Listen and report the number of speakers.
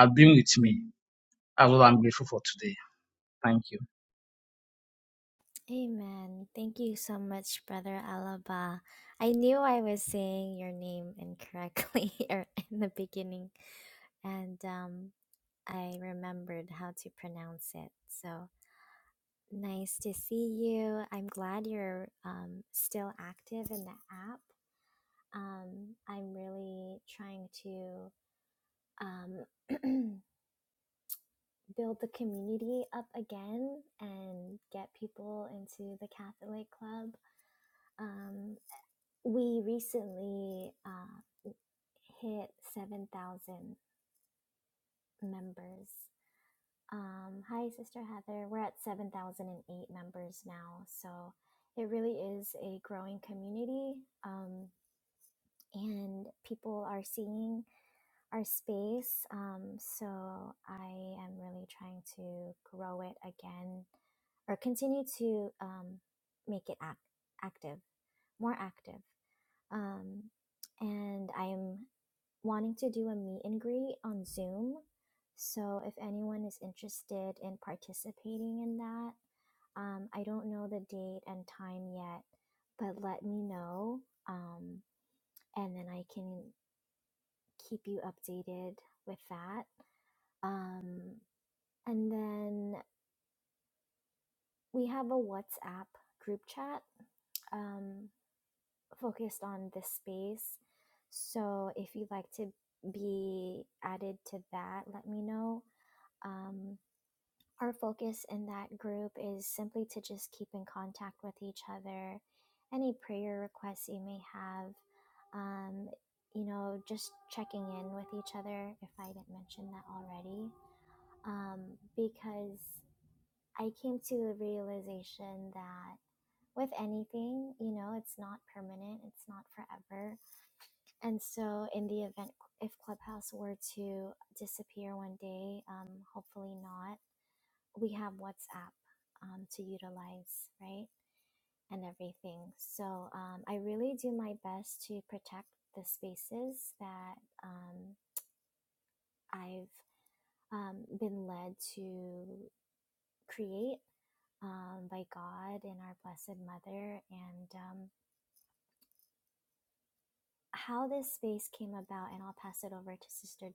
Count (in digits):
2